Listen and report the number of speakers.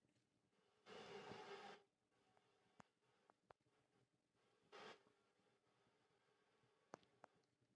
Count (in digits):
0